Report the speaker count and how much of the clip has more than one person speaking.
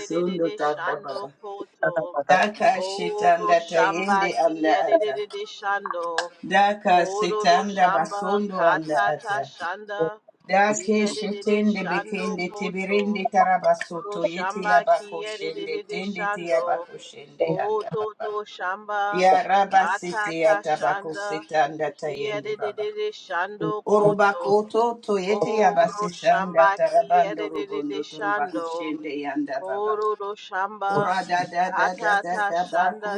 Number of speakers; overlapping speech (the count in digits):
2, about 64%